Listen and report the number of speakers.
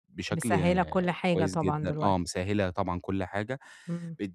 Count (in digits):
2